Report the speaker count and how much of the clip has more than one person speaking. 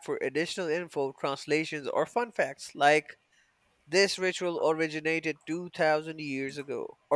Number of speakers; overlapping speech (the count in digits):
1, no overlap